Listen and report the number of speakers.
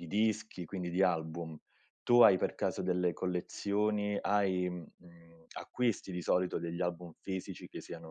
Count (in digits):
1